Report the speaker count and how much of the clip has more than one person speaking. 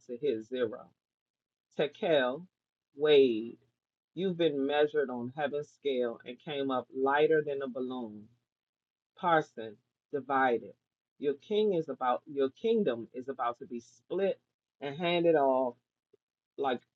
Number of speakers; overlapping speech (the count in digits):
1, no overlap